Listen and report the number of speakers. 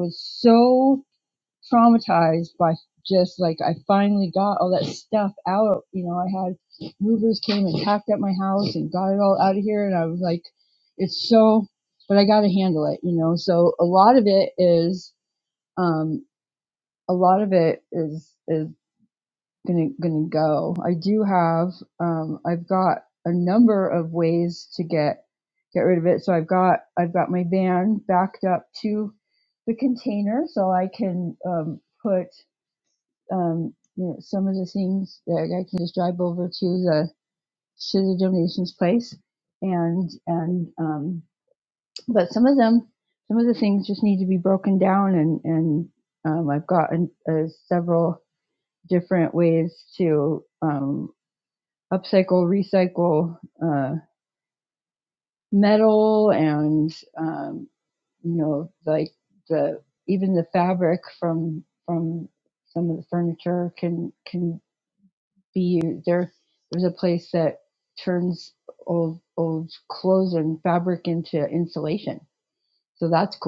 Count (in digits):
1